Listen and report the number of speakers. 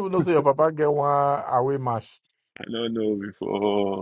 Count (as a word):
two